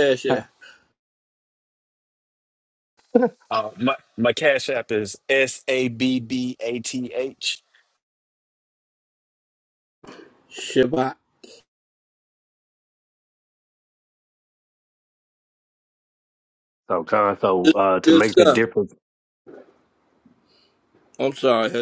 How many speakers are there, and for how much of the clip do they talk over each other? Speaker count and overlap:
3, about 3%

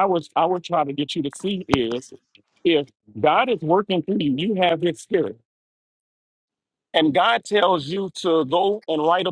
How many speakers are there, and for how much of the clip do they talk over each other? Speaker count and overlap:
1, no overlap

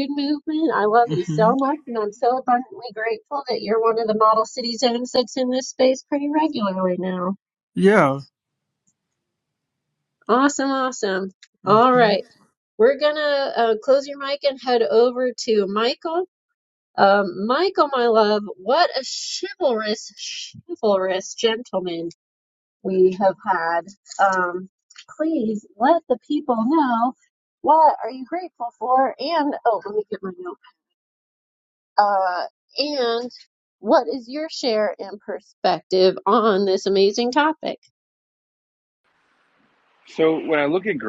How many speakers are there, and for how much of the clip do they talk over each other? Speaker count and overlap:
3, about 2%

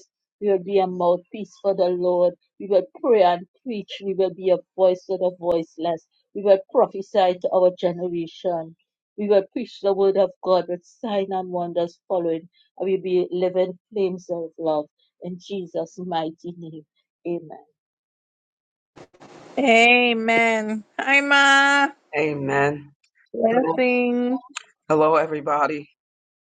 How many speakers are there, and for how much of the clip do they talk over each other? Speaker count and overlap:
3, about 1%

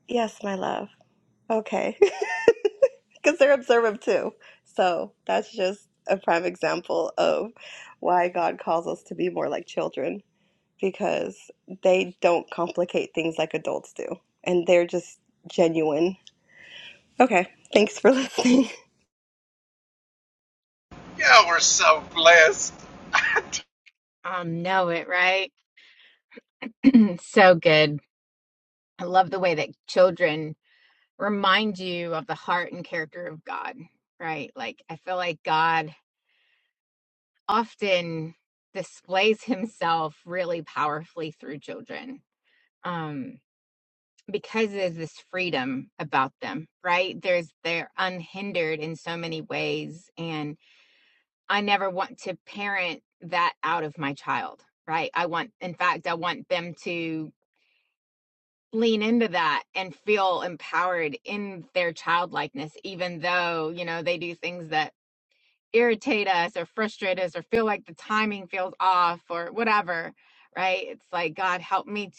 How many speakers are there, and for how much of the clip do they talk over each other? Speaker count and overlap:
3, no overlap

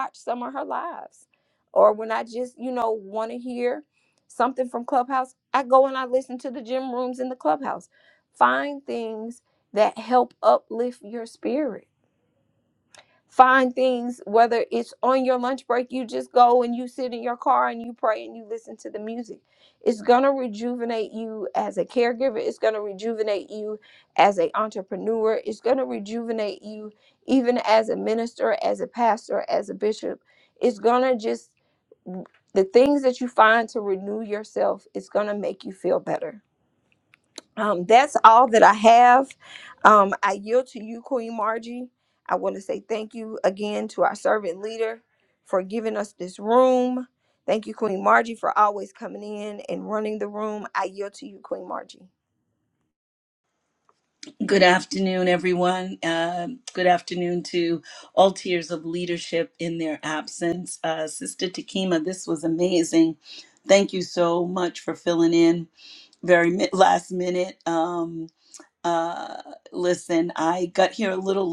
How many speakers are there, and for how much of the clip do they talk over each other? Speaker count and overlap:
2, no overlap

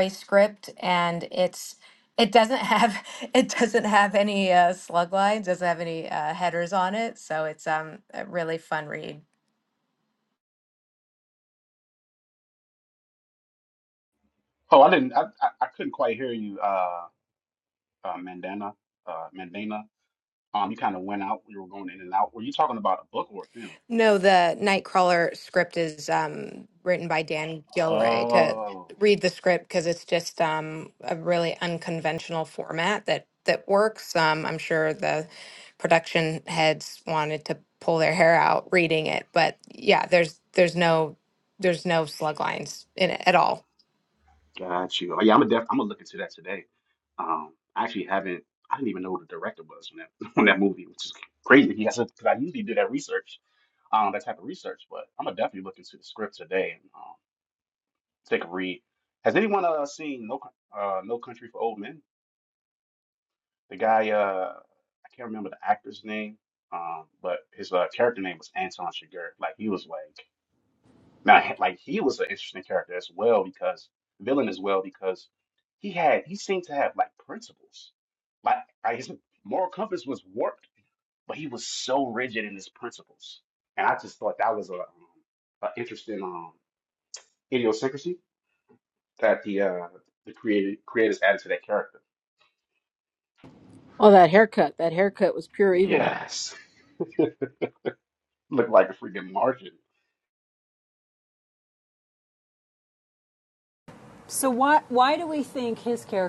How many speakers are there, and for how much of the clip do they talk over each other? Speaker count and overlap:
4, about 1%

